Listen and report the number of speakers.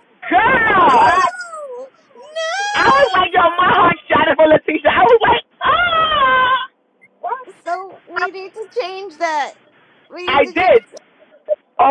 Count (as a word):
two